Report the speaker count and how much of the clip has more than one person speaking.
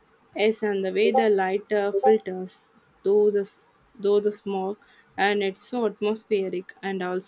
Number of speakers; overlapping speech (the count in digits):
1, no overlap